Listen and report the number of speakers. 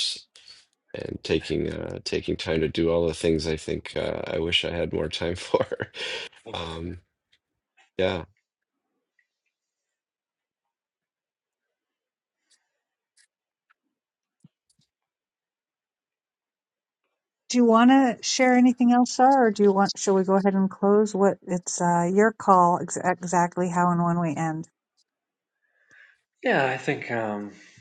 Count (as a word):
three